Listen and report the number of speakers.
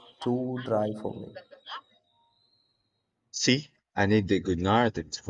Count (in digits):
2